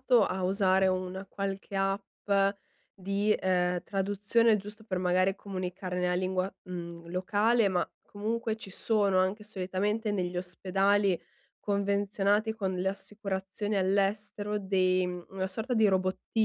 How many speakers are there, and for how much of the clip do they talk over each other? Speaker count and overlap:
one, no overlap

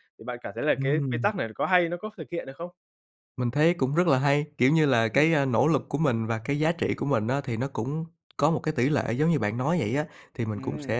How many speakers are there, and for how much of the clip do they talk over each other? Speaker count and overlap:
two, about 9%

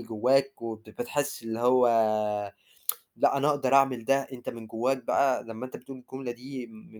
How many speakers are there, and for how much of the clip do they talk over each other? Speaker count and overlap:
one, no overlap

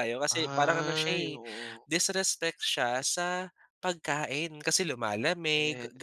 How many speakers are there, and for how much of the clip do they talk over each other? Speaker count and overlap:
two, about 24%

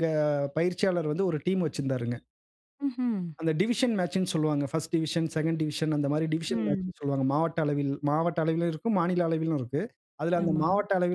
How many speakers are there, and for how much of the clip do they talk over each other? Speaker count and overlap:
two, about 6%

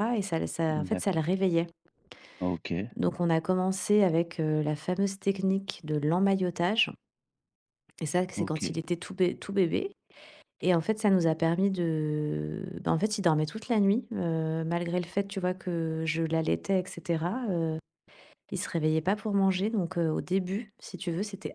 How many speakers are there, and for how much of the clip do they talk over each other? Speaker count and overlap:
two, about 3%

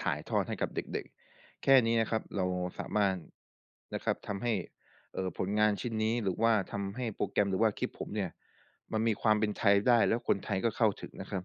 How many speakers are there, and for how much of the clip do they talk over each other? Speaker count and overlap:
one, no overlap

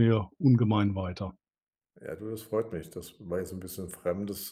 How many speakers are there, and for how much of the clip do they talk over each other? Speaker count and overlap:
two, no overlap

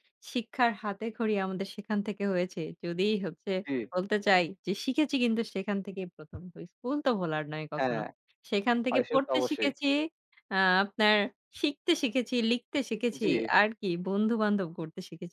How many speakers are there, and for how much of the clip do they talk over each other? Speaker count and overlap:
two, about 9%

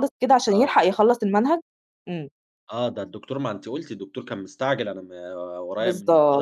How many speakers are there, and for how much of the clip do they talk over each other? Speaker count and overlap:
two, about 13%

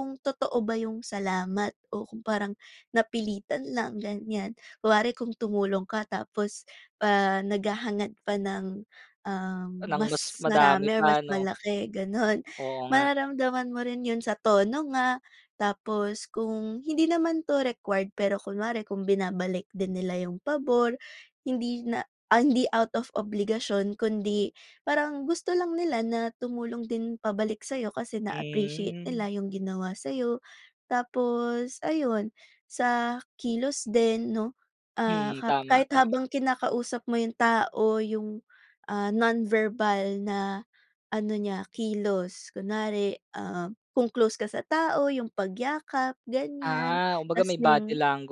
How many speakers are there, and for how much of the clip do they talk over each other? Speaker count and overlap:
two, about 9%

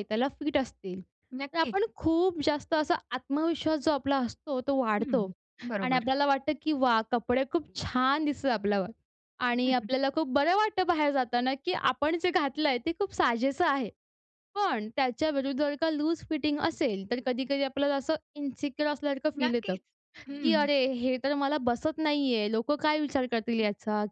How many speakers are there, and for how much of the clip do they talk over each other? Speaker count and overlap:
two, about 6%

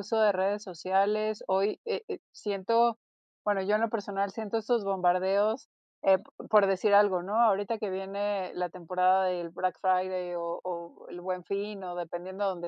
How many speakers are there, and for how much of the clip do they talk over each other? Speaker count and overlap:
one, no overlap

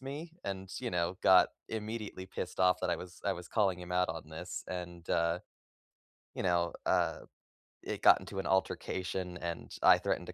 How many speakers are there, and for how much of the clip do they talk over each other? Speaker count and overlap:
one, no overlap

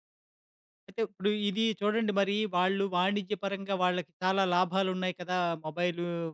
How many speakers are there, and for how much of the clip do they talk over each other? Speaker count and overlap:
one, no overlap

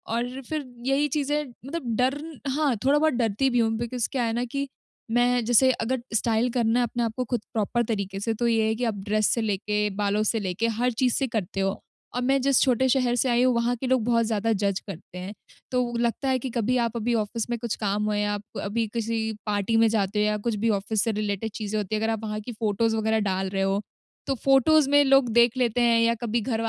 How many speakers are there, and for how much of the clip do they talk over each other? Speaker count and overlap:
one, no overlap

